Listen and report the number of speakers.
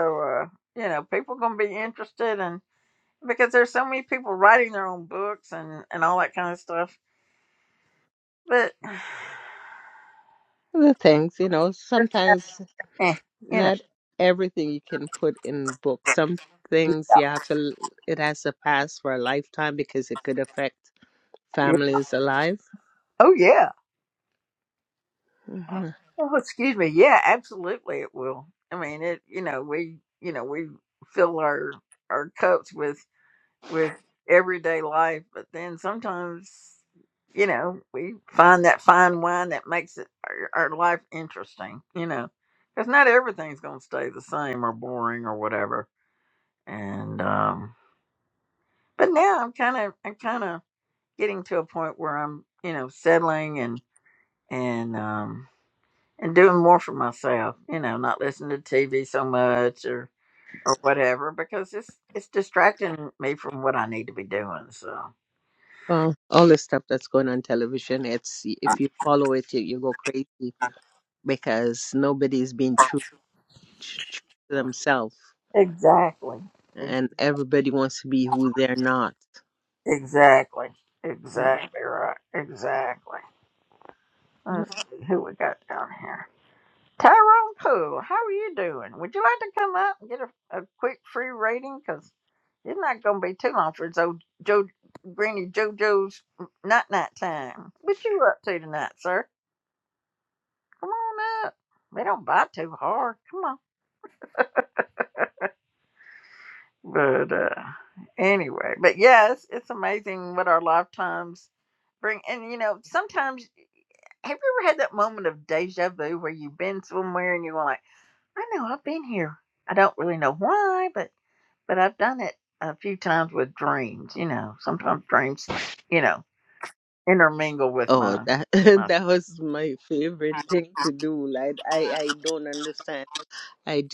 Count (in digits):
2